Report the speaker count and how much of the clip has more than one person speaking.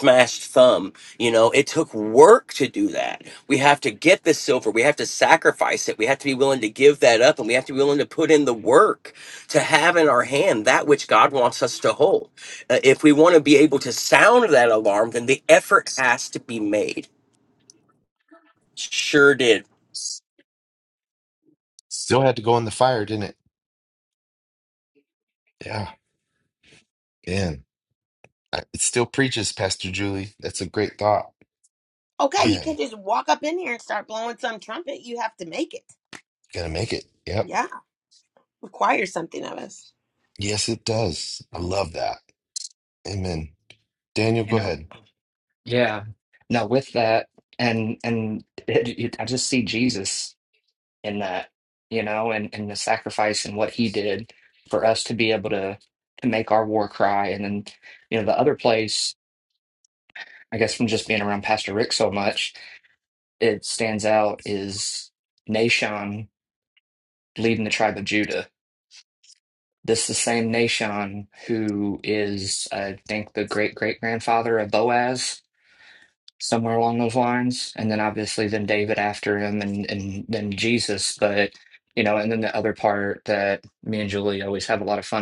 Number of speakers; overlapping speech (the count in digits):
4, about 1%